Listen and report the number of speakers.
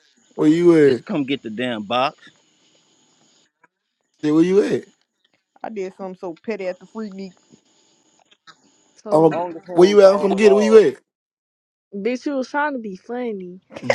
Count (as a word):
four